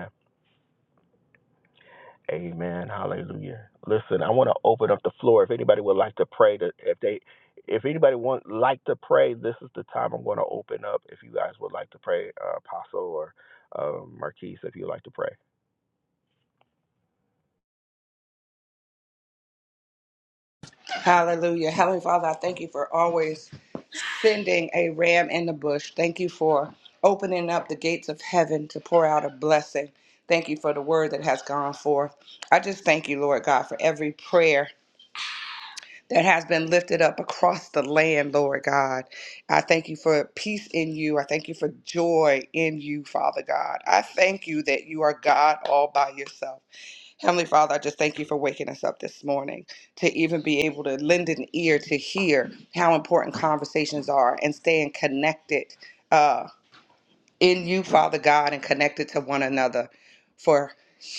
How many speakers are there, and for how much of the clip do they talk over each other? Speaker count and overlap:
2, no overlap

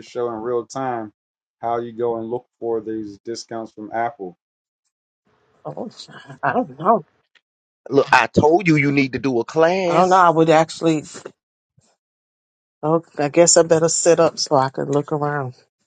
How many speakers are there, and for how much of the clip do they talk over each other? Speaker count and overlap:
3, about 1%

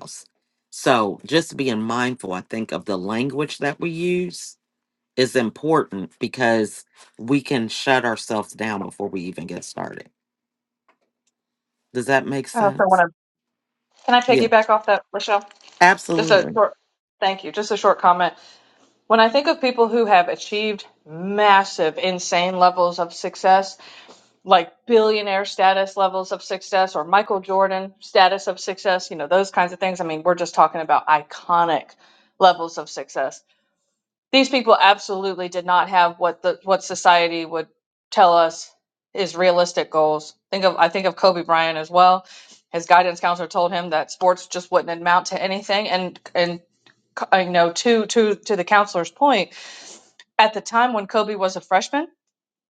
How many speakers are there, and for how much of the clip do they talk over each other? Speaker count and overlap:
2, about 2%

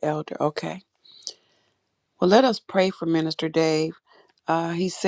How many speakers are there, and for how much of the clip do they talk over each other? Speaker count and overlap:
1, no overlap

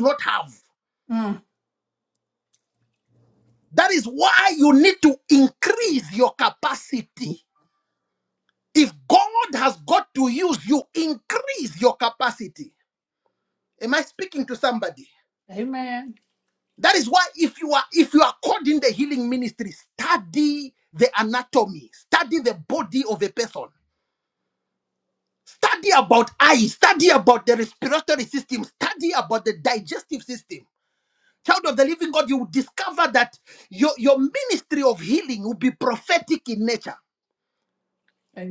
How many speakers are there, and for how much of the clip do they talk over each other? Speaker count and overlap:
2, no overlap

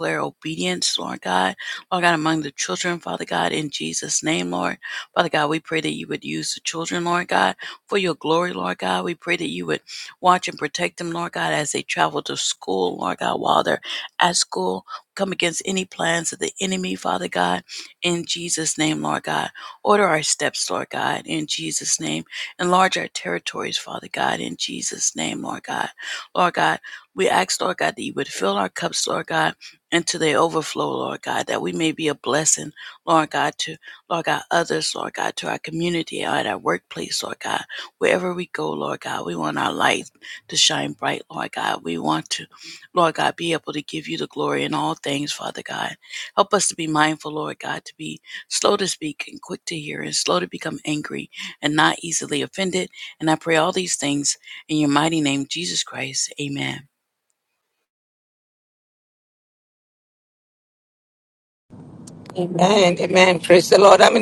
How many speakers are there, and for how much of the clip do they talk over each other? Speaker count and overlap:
2, no overlap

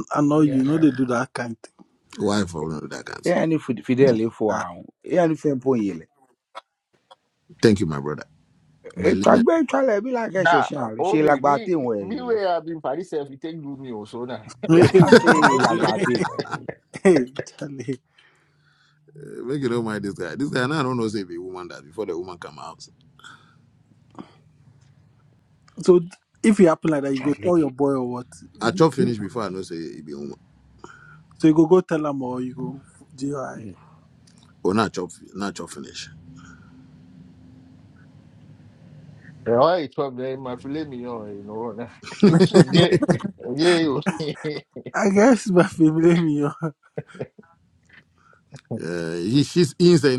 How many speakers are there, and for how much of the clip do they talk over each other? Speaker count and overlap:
4, about 8%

